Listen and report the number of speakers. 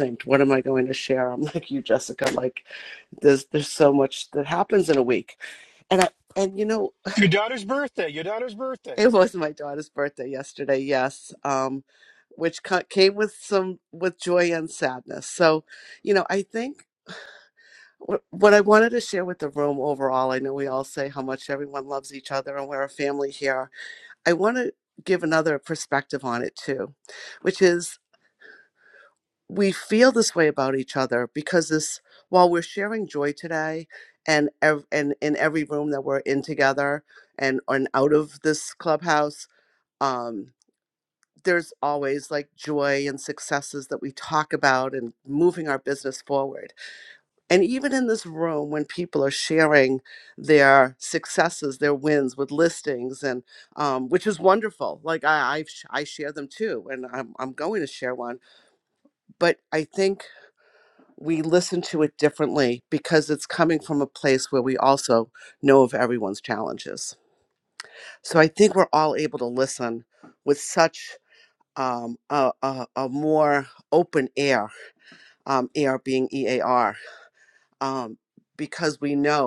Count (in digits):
2